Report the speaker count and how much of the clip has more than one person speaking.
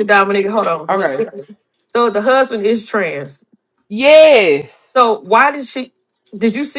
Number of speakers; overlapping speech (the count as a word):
two, about 4%